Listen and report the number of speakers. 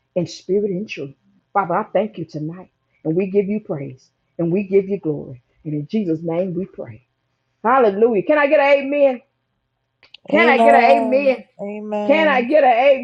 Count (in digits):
2